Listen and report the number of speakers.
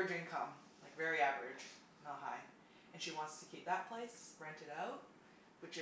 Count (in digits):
1